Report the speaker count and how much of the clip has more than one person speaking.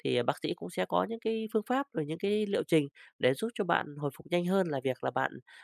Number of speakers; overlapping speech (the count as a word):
one, no overlap